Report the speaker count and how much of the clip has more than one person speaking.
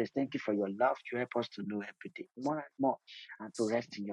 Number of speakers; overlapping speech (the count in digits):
1, no overlap